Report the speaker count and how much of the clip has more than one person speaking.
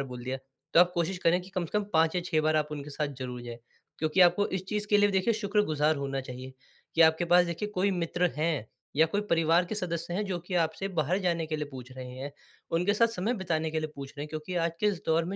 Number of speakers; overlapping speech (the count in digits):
1, no overlap